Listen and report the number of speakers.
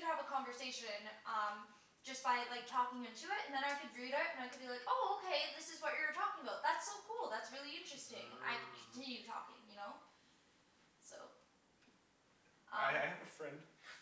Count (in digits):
2